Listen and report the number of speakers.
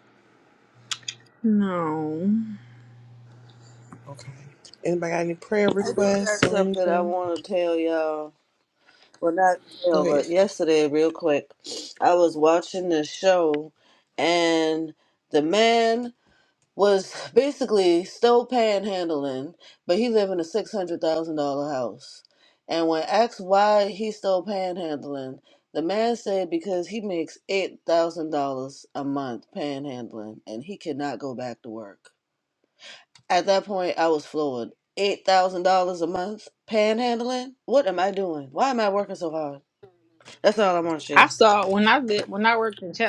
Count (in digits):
3